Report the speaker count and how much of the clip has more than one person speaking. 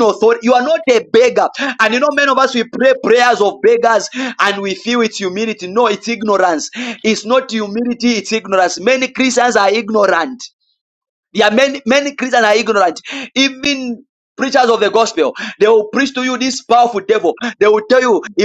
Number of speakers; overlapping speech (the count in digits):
1, no overlap